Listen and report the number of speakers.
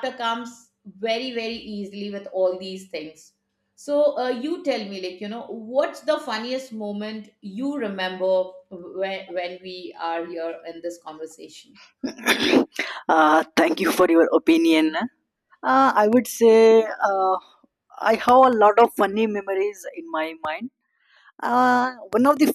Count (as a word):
two